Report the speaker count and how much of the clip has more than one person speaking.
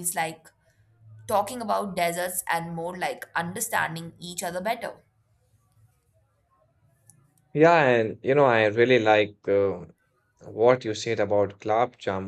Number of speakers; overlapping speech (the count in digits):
2, no overlap